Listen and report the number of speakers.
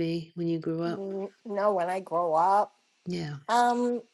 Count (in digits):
2